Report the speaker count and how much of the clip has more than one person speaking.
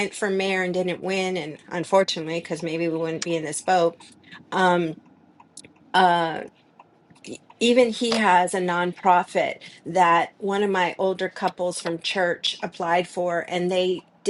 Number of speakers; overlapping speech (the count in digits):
1, no overlap